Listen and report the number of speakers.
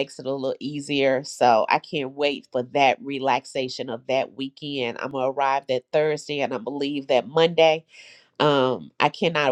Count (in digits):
1